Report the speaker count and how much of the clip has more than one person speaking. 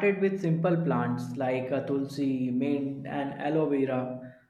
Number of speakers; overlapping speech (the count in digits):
1, no overlap